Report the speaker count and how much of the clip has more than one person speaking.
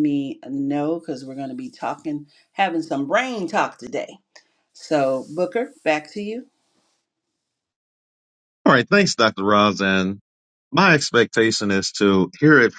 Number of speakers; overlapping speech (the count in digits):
2, no overlap